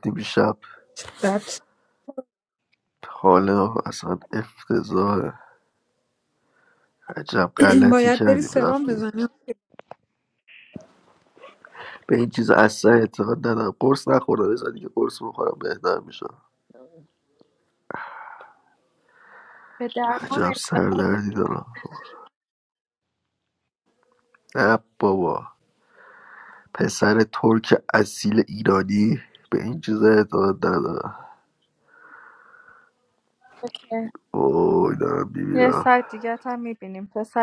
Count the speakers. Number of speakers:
3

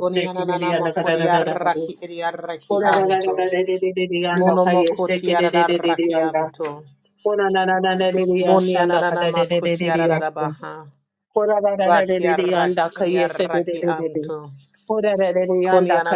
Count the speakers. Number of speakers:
2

